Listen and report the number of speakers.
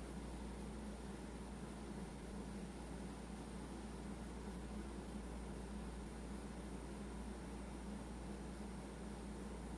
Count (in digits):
0